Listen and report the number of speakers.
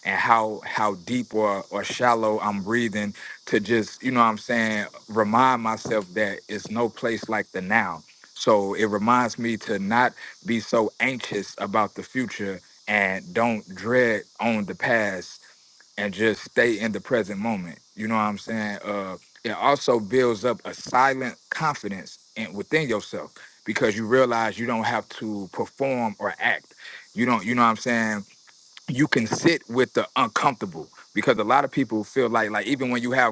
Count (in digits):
1